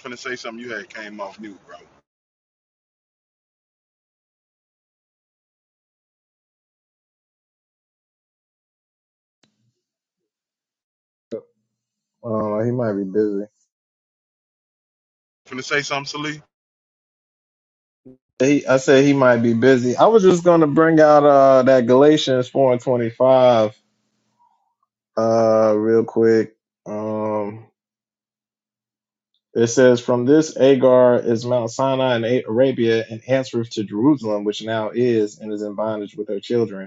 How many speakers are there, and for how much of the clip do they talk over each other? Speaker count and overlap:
2, no overlap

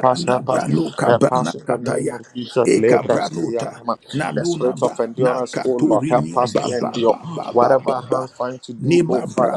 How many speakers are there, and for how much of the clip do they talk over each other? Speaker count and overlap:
2, about 75%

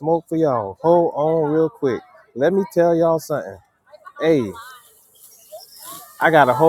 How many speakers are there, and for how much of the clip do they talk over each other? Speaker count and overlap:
1, no overlap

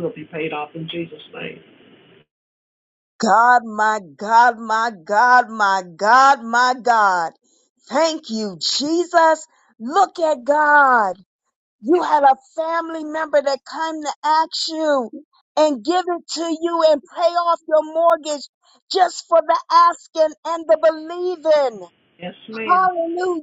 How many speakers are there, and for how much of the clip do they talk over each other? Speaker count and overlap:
2, about 1%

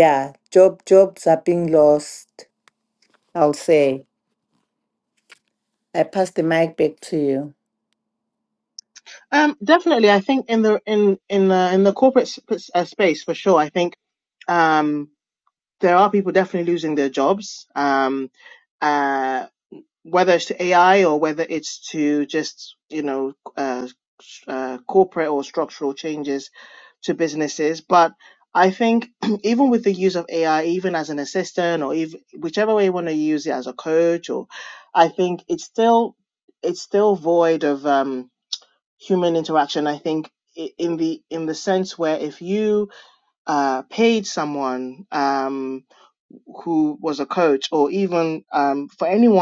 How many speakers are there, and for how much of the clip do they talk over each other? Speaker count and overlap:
2, no overlap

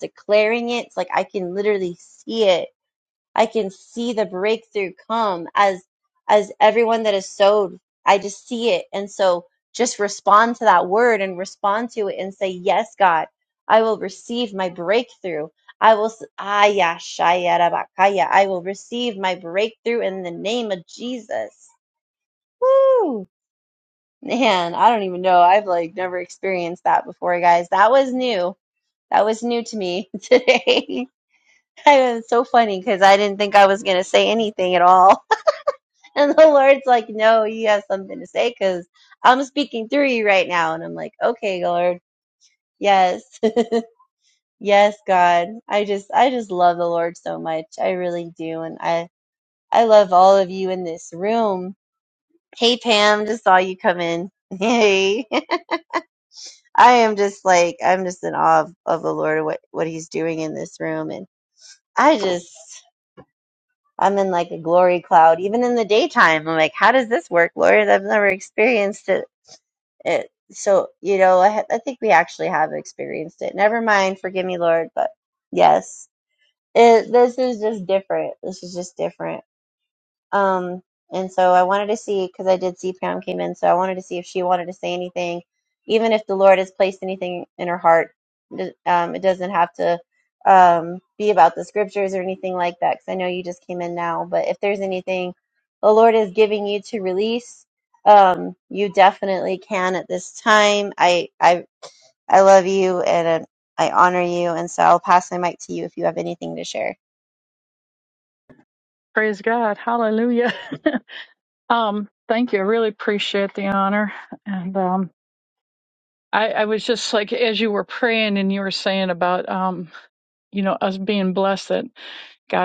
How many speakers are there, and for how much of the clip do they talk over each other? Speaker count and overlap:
2, no overlap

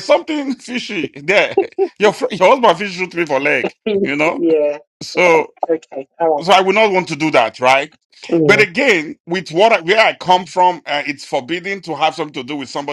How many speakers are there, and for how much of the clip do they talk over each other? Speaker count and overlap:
2, about 3%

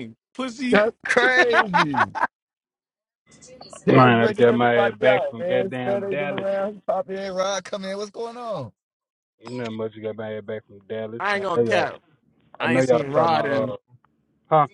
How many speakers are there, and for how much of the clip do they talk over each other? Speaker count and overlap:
3, about 31%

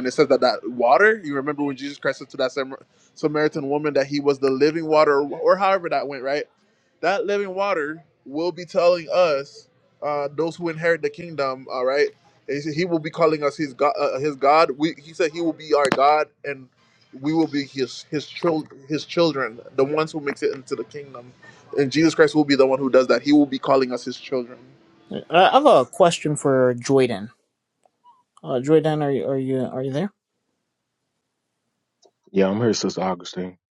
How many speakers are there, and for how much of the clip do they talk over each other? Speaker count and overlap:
3, no overlap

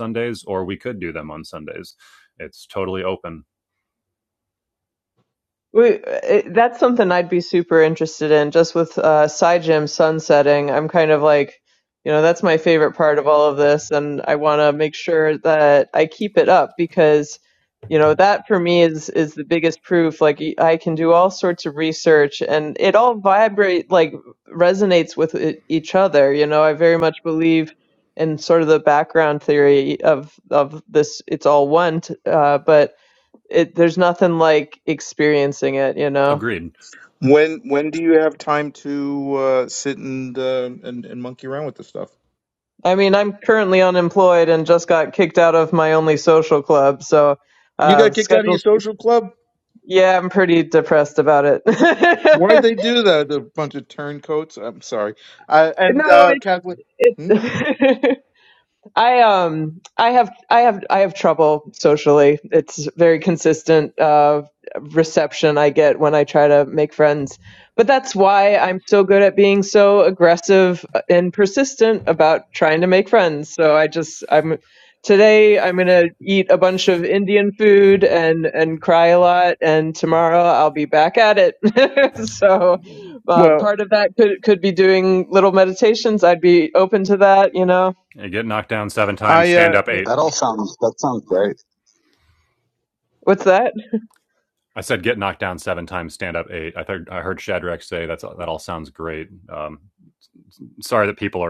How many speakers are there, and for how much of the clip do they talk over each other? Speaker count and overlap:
4, about 2%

